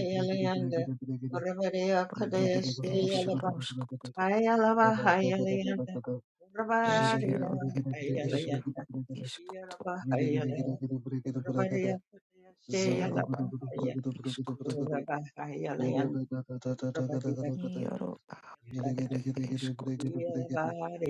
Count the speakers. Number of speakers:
3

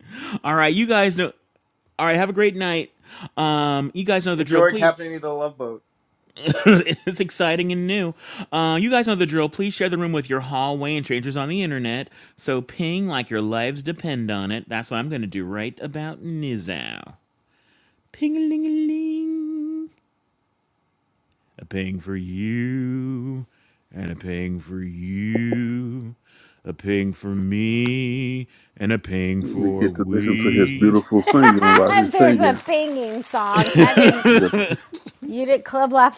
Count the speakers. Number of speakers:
4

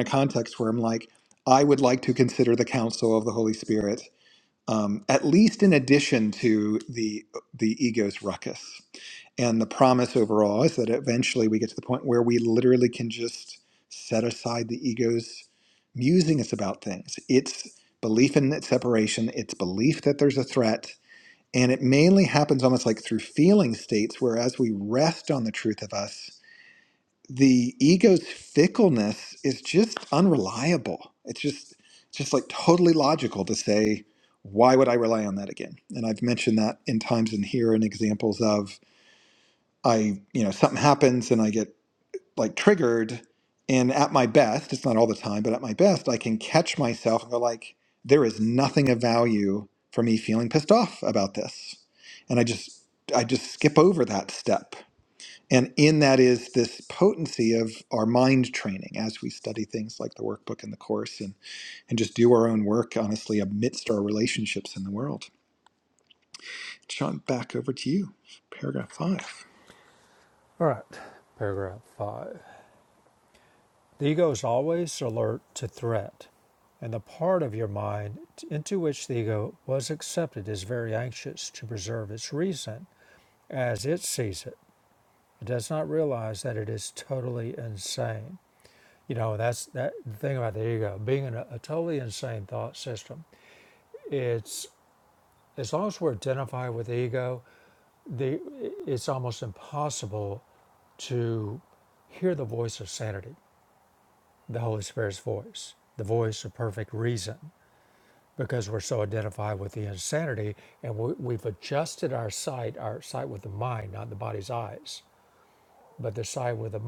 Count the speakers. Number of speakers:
2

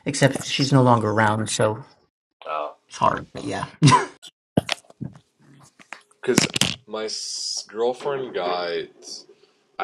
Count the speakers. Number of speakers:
2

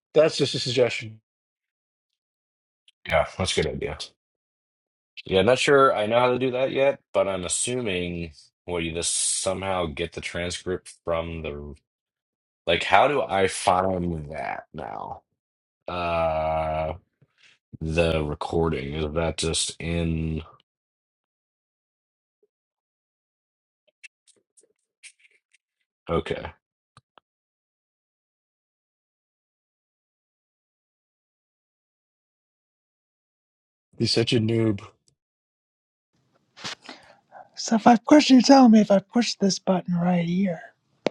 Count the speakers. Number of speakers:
3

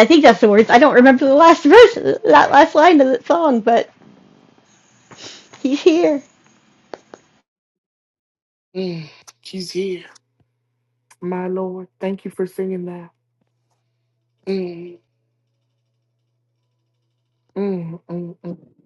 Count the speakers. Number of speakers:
2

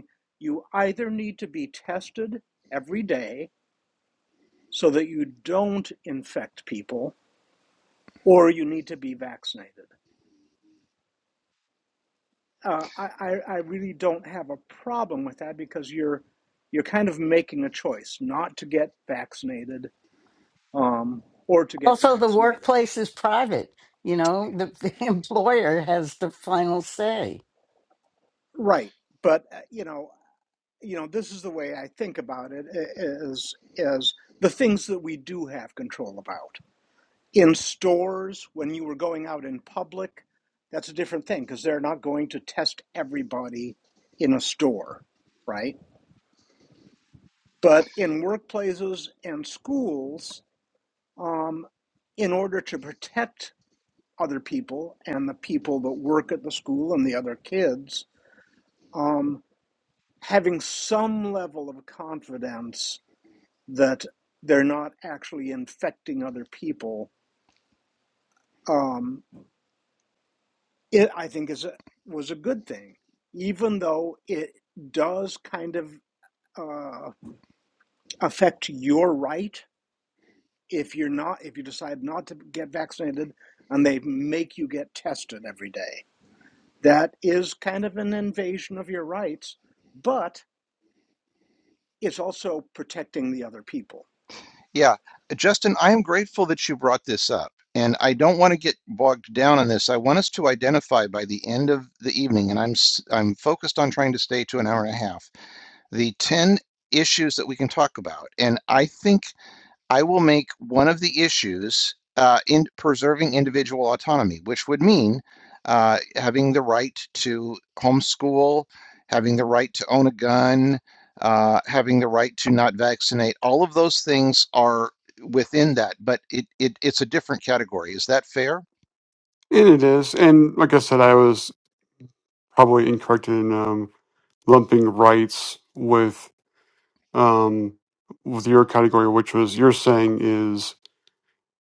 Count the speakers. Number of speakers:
4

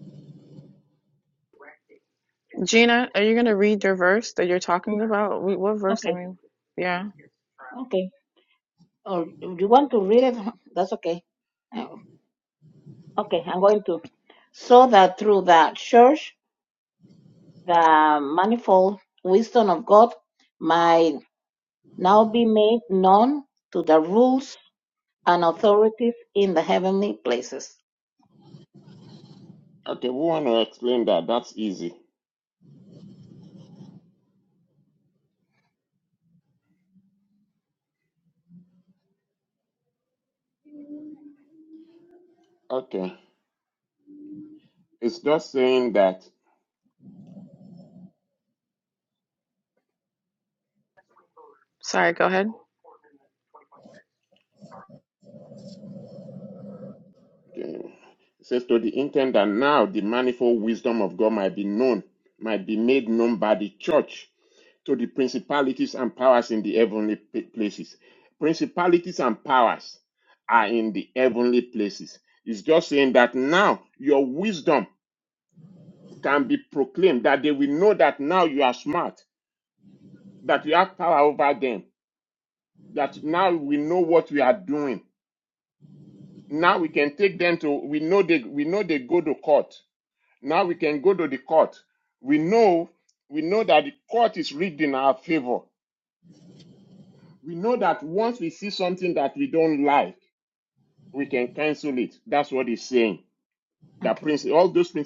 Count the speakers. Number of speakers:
3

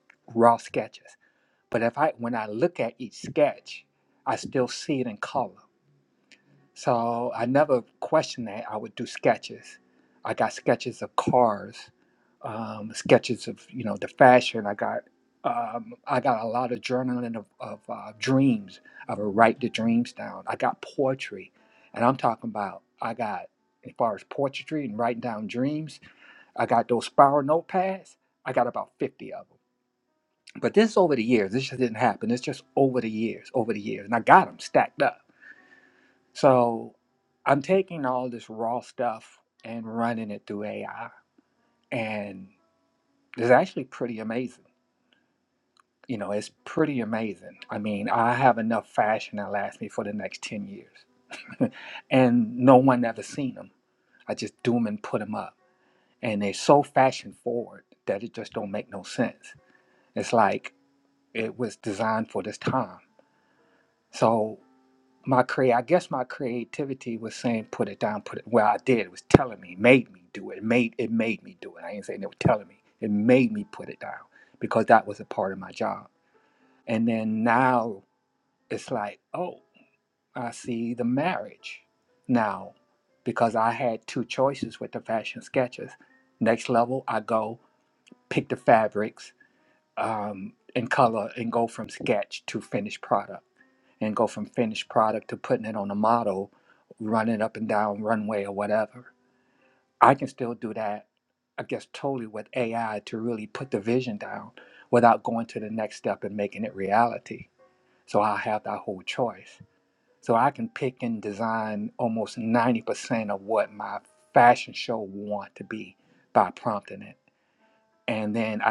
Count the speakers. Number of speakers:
1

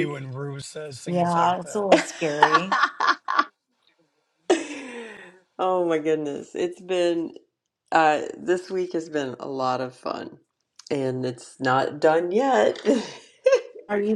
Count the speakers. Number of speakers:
3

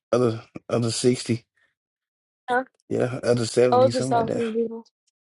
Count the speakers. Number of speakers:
2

